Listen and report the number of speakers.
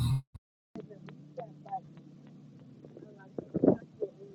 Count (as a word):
zero